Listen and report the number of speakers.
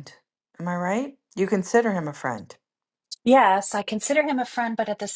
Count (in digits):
2